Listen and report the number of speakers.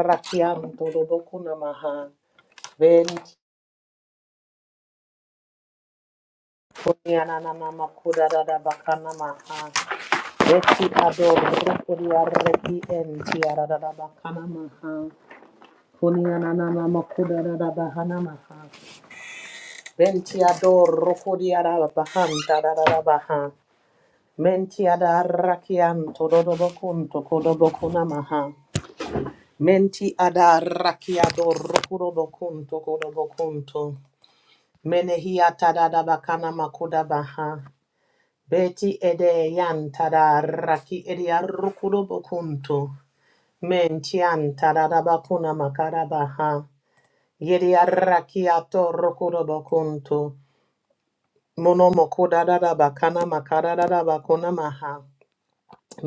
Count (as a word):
one